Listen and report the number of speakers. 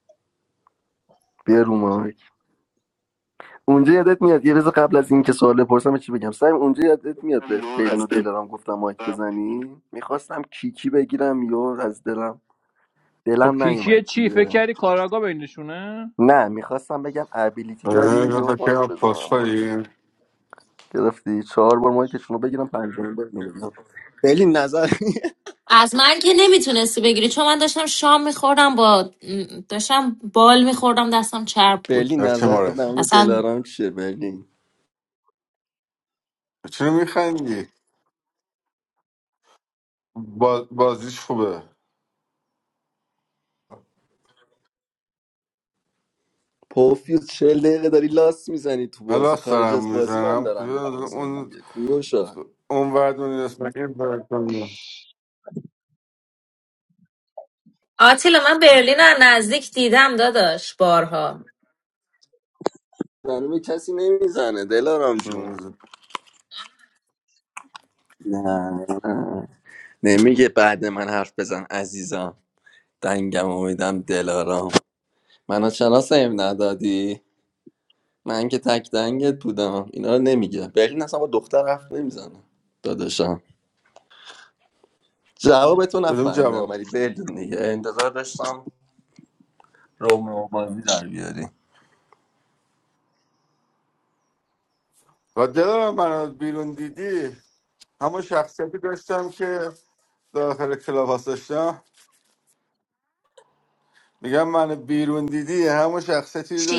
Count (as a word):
four